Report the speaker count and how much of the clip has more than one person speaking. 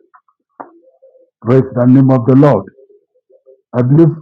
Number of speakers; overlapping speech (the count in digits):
1, no overlap